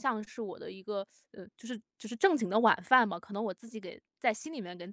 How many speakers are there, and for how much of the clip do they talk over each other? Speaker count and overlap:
one, no overlap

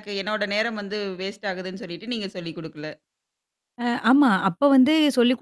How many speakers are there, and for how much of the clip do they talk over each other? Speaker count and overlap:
two, no overlap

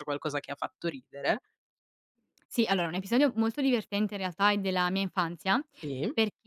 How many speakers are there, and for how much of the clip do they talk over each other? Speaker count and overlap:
two, no overlap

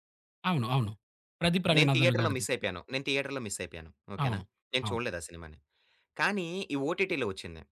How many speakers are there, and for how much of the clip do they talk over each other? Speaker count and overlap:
two, about 15%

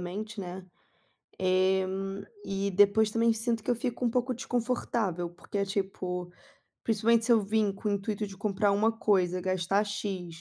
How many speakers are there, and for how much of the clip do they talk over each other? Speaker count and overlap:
one, no overlap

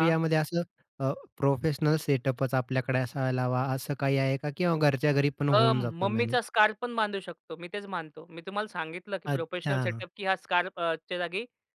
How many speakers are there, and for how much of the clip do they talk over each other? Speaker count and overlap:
two, about 15%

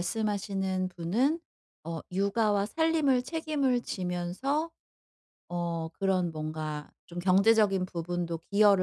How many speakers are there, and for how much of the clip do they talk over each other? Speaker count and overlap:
one, no overlap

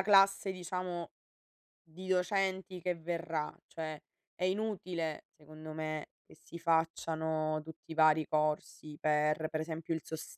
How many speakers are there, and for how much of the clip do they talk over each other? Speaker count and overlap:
one, no overlap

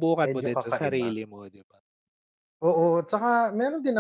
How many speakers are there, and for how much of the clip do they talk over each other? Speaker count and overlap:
two, about 22%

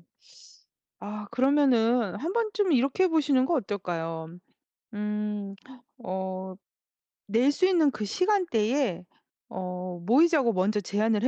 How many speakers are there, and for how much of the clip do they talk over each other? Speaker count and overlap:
one, no overlap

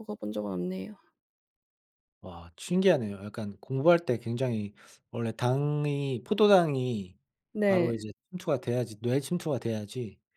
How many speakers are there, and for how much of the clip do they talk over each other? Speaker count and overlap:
two, about 3%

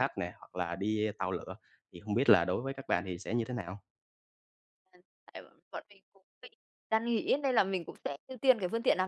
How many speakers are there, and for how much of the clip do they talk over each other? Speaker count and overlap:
two, no overlap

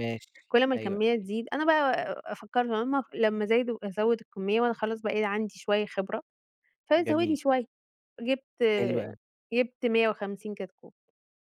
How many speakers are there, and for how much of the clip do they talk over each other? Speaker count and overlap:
two, about 7%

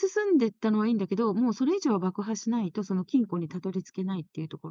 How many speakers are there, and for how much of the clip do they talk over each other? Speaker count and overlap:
one, no overlap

